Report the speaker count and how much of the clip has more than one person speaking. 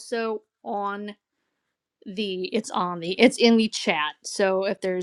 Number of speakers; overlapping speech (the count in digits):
1, no overlap